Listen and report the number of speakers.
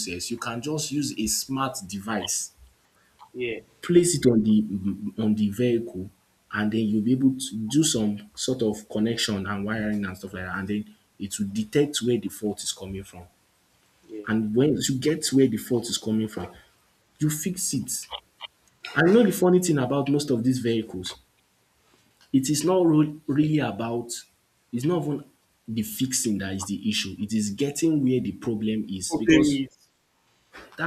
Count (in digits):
2